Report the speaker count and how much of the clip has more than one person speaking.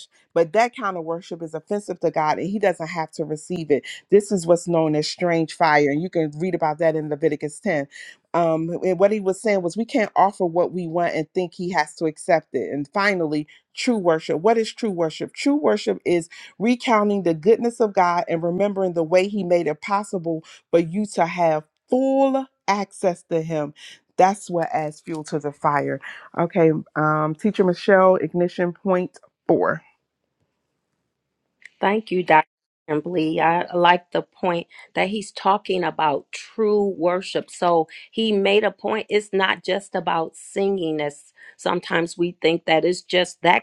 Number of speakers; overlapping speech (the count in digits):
2, no overlap